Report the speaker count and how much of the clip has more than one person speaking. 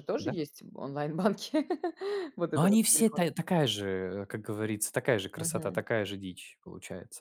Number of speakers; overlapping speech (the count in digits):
2, about 18%